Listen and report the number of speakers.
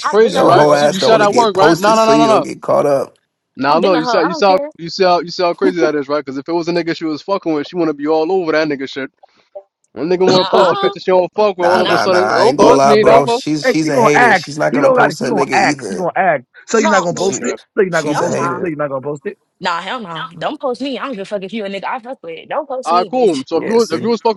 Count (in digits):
4